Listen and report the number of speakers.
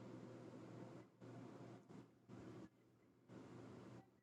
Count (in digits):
0